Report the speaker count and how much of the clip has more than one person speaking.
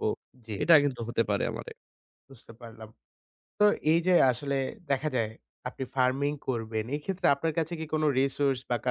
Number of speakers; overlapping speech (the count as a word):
two, no overlap